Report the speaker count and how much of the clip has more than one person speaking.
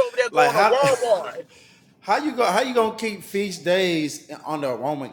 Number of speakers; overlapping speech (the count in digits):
2, about 11%